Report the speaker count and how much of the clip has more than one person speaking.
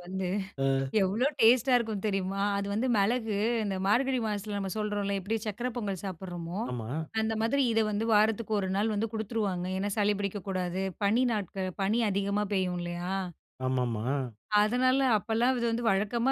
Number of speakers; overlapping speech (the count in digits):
2, no overlap